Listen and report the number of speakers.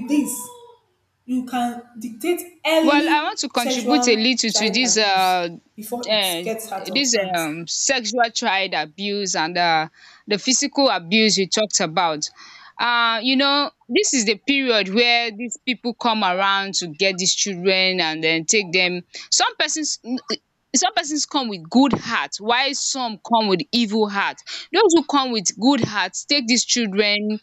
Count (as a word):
two